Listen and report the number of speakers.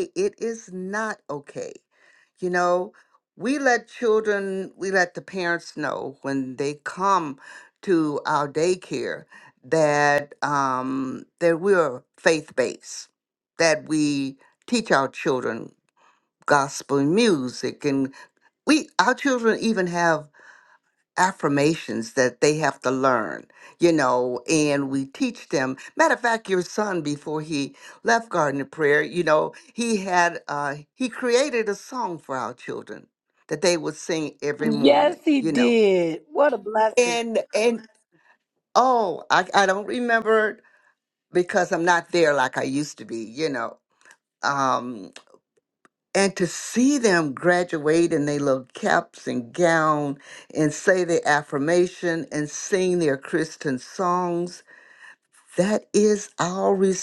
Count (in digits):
2